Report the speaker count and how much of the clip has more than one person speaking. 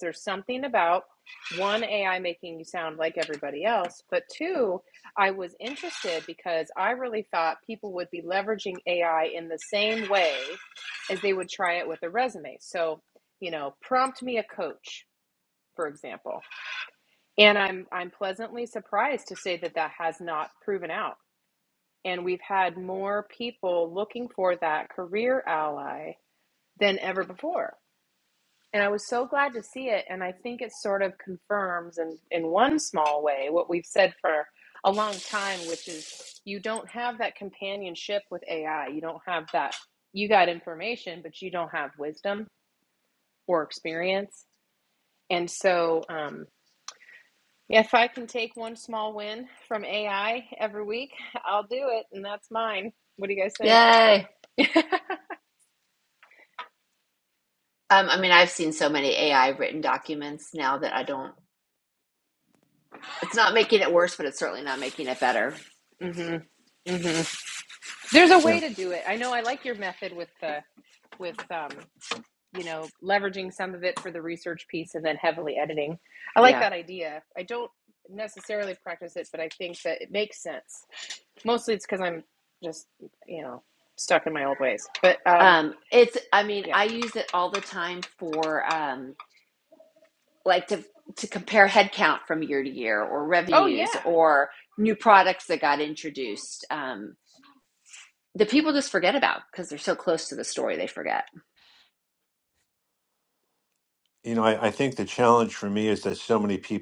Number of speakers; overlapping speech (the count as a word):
three, about 1%